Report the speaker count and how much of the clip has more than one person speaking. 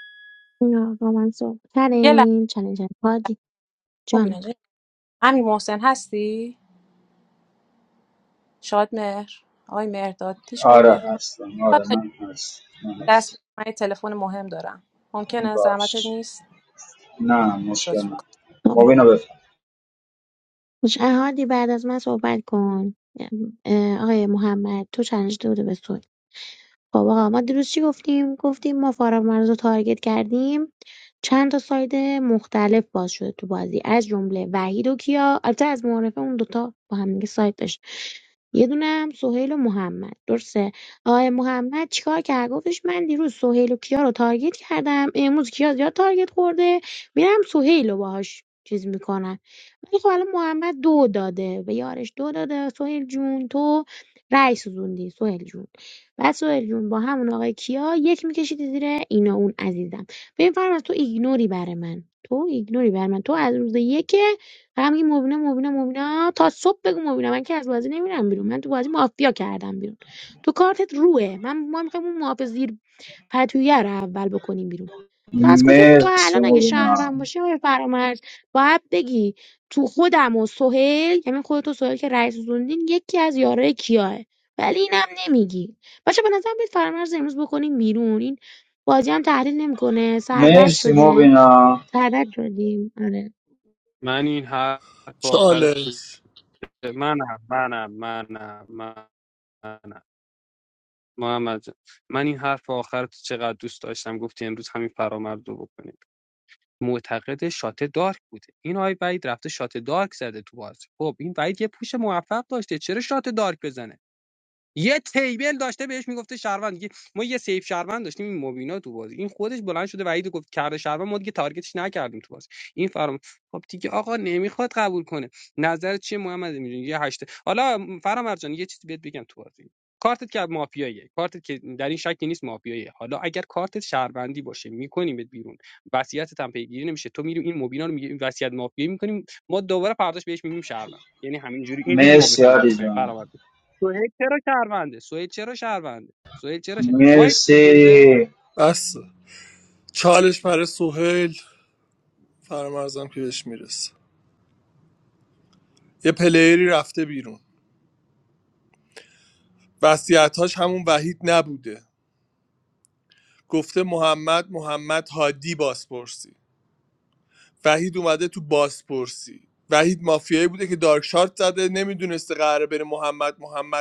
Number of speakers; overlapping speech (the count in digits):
5, about 4%